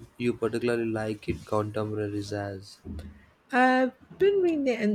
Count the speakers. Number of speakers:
2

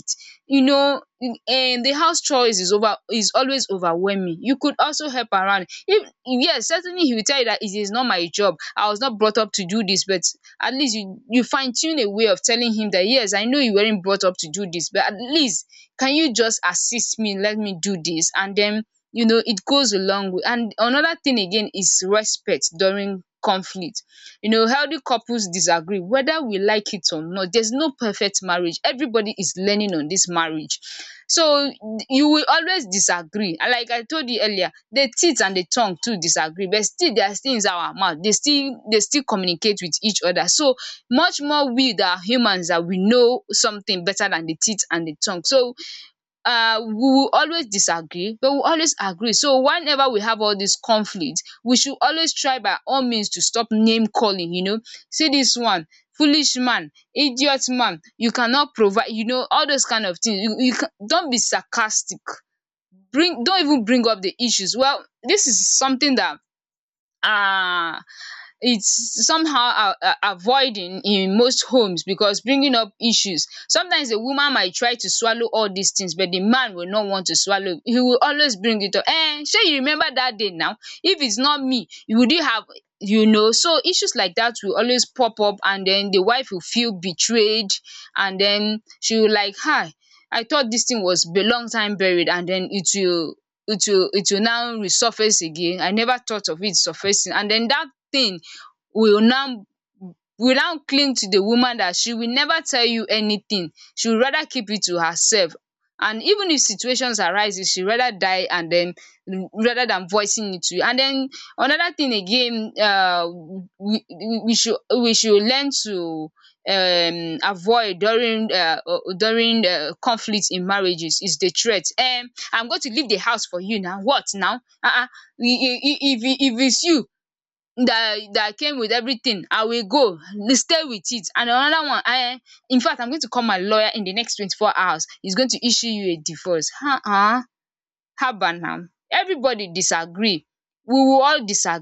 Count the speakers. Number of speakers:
1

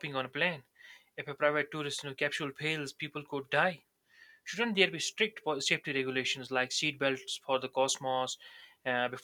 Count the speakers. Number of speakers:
1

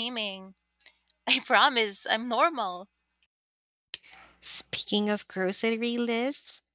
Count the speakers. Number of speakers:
2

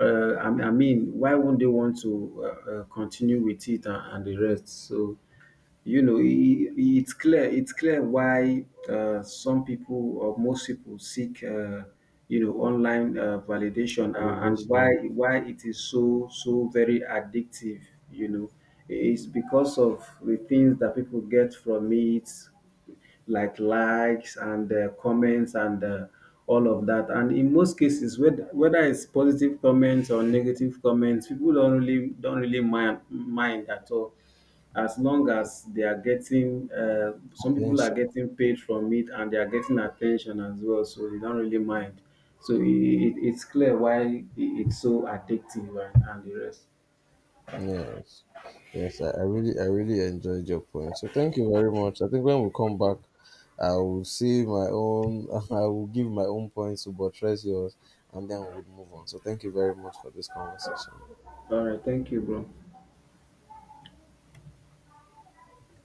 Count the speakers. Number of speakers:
2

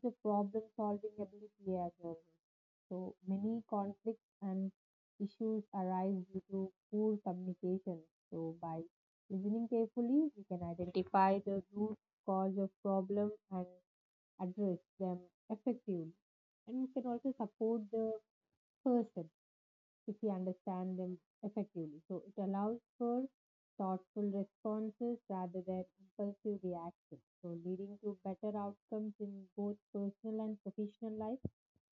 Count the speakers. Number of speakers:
1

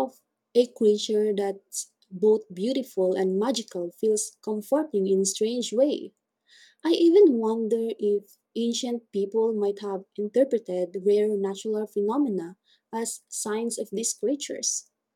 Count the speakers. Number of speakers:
1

